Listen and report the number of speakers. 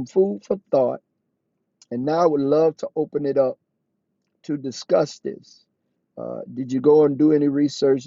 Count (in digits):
1